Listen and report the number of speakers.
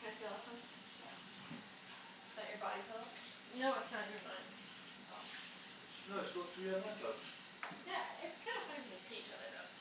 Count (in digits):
3